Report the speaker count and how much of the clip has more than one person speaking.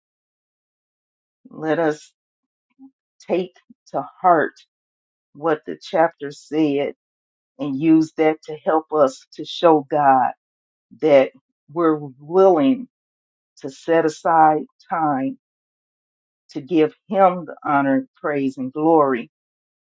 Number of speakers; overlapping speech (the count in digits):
1, no overlap